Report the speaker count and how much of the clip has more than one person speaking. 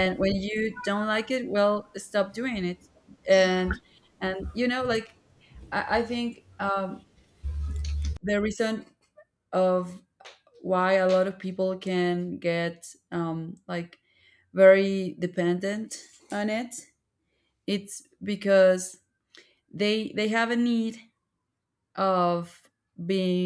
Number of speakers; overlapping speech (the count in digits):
1, no overlap